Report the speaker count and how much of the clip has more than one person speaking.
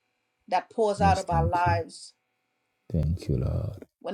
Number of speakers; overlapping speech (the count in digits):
2, about 18%